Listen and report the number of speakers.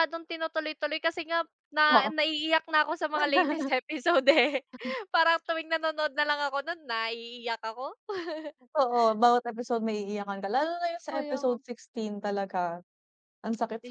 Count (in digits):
2